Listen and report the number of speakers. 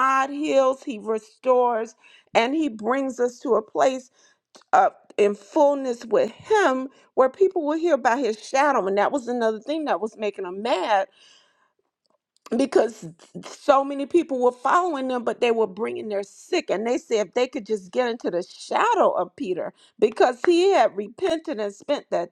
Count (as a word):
one